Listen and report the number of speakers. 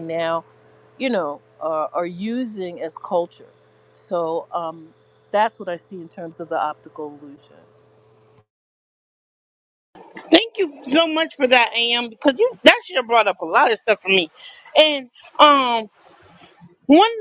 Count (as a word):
two